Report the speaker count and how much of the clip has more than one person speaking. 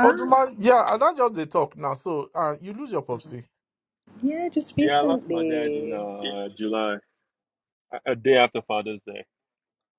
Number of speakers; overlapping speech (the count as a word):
three, about 14%